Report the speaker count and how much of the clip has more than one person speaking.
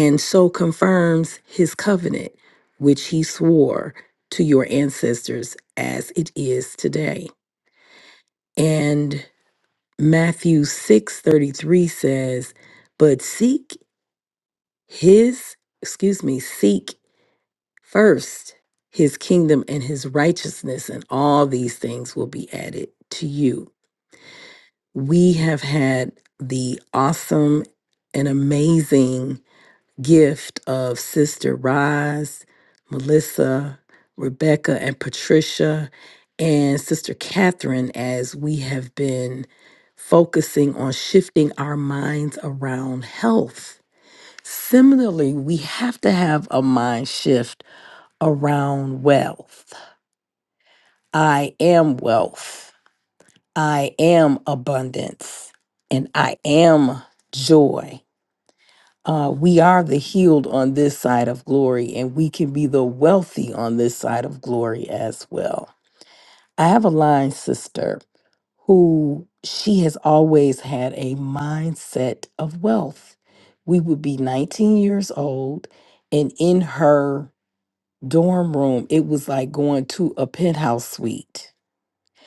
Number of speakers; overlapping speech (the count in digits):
1, no overlap